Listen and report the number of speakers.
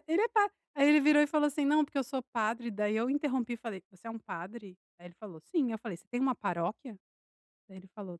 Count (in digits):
1